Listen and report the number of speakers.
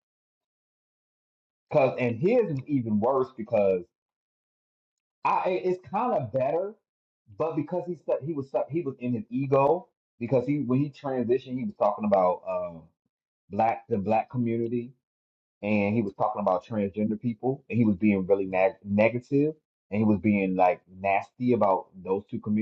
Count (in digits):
1